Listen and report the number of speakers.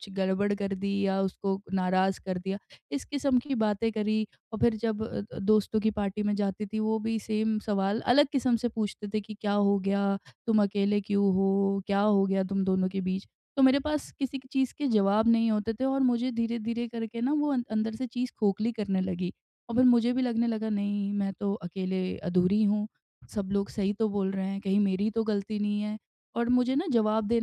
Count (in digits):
1